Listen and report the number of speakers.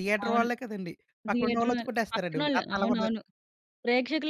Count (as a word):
two